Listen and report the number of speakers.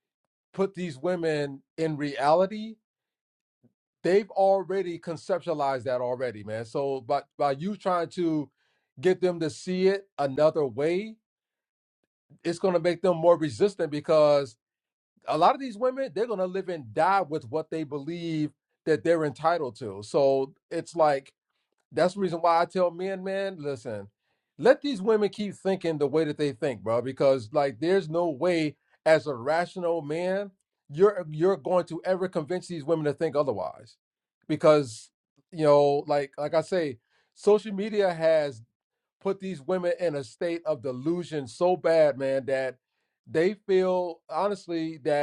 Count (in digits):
1